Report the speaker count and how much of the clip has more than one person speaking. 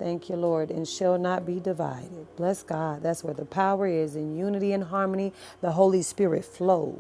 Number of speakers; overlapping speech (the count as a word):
one, no overlap